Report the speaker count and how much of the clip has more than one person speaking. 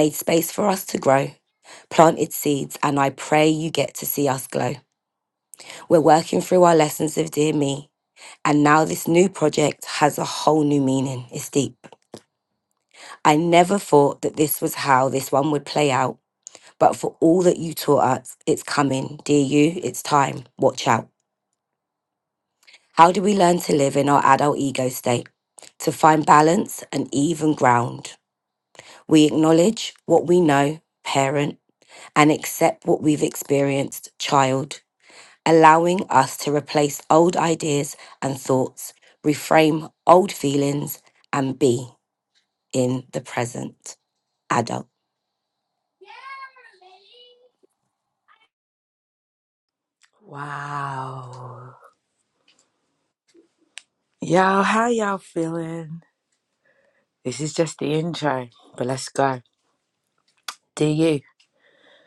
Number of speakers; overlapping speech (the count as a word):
two, no overlap